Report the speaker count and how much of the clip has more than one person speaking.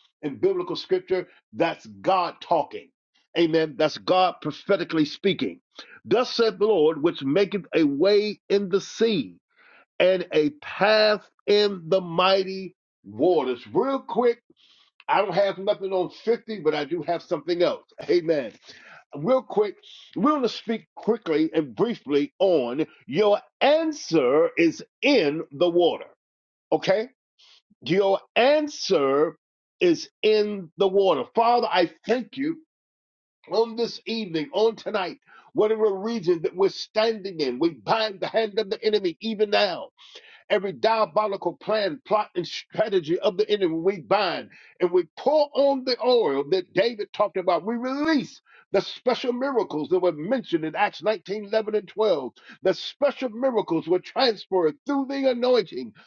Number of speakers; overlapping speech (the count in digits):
1, no overlap